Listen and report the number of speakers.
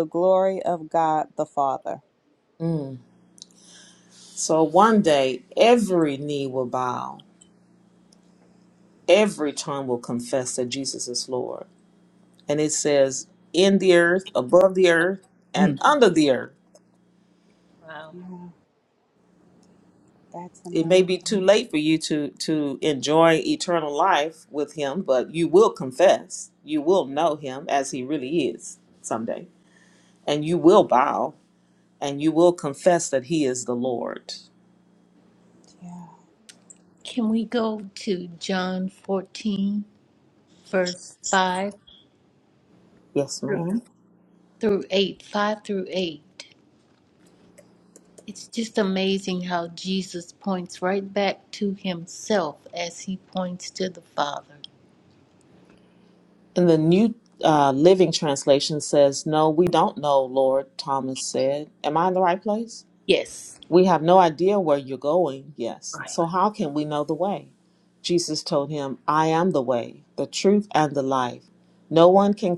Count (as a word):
three